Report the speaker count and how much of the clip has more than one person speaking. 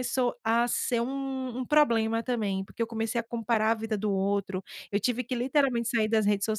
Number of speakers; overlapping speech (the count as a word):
one, no overlap